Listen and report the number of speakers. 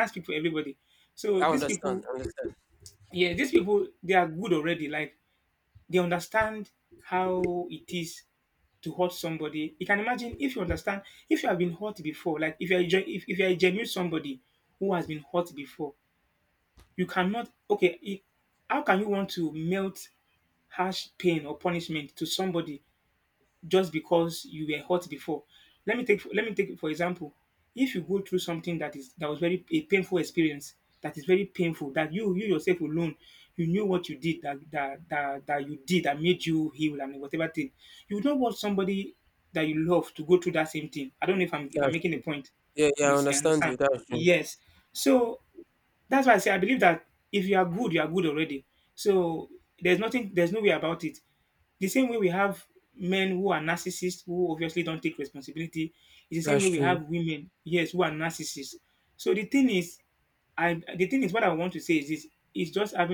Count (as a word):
two